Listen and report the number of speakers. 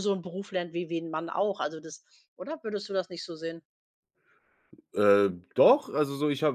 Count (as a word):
two